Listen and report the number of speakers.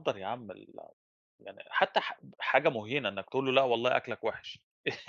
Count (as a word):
one